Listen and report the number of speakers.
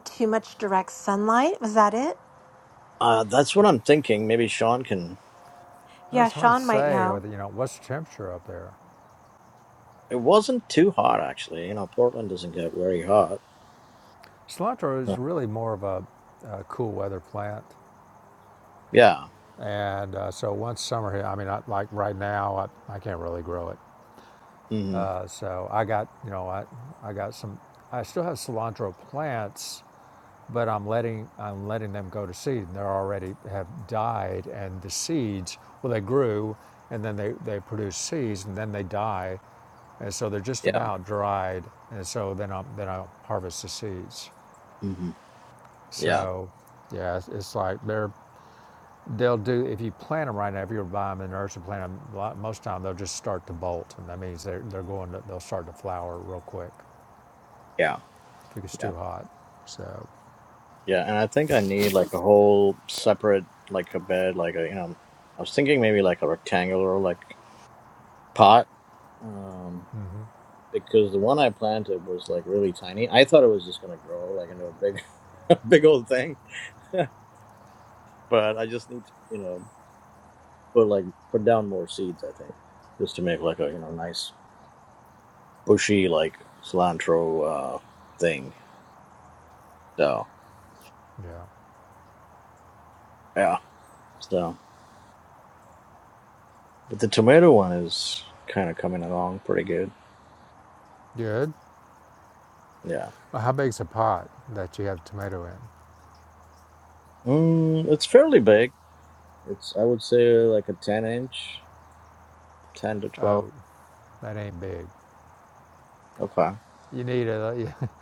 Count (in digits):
3